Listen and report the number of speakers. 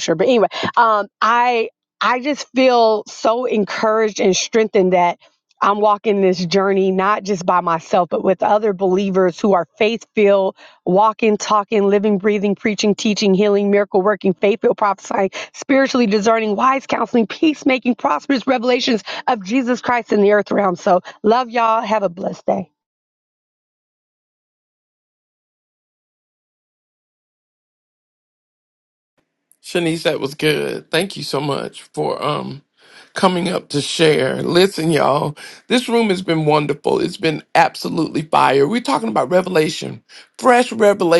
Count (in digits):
2